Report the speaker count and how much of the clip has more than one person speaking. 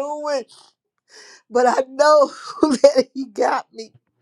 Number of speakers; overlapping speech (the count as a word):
one, no overlap